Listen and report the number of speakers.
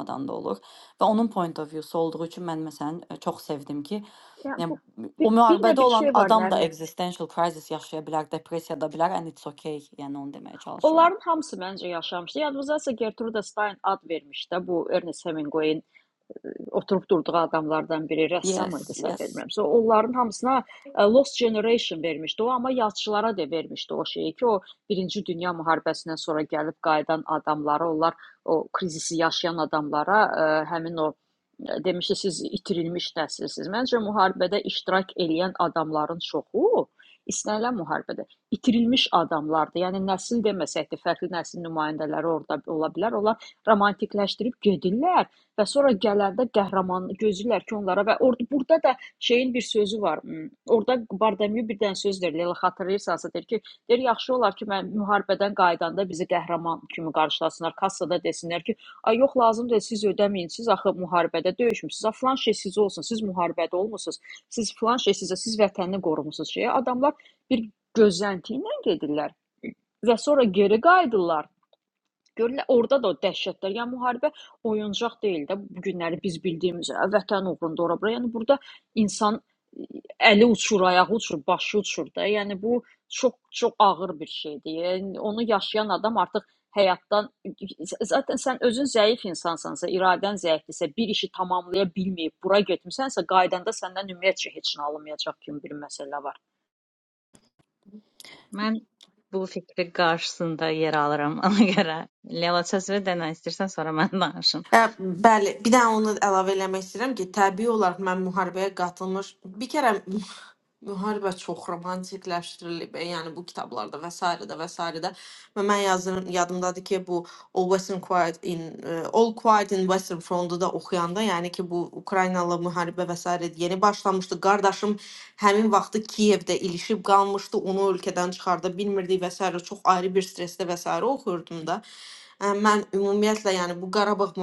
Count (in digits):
4